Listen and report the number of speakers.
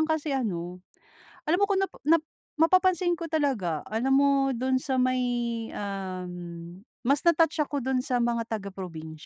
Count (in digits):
1